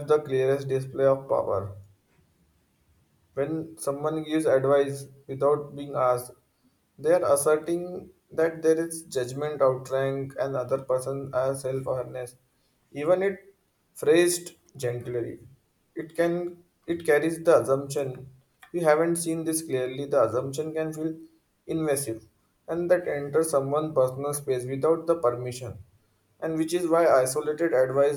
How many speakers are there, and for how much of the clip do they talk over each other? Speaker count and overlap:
one, no overlap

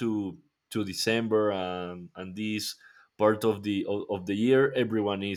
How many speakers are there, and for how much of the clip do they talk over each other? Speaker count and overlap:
one, no overlap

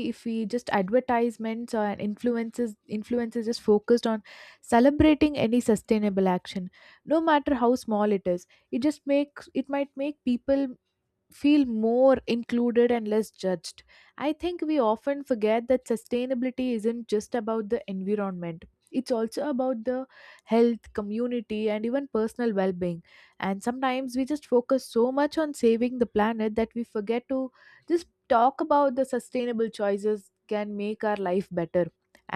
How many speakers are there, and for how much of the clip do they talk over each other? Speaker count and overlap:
one, no overlap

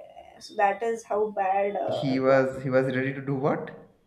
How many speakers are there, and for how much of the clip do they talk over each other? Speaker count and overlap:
two, about 6%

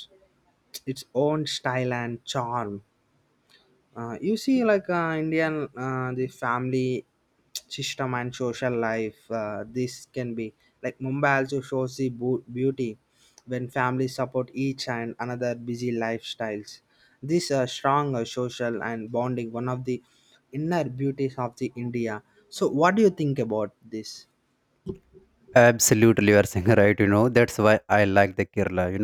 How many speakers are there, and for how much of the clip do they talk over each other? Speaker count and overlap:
two, no overlap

